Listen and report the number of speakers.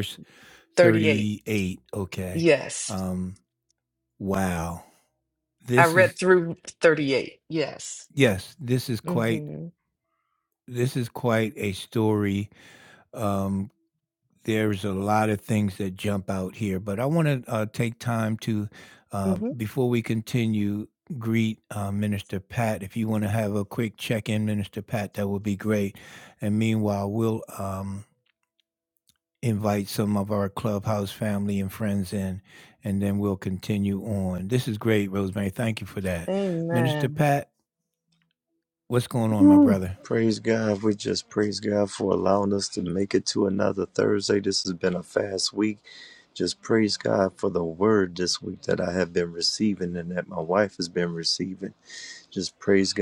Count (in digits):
3